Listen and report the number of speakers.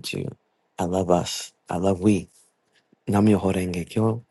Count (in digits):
1